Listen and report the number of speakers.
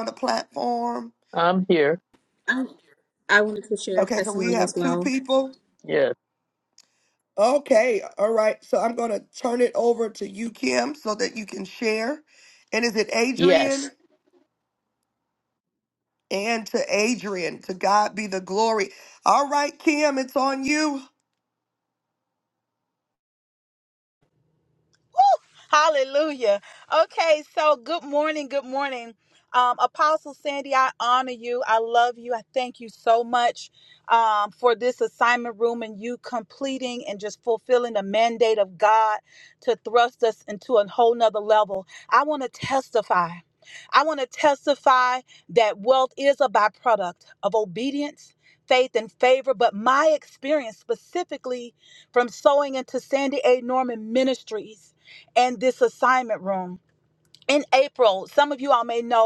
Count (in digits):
4